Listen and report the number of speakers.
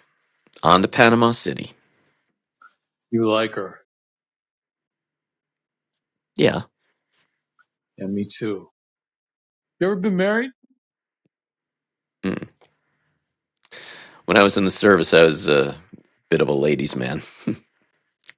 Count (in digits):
2